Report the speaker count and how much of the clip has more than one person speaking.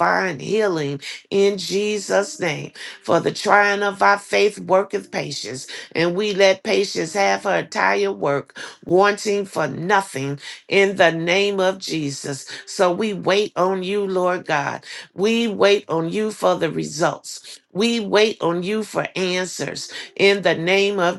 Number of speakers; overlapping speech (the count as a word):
one, no overlap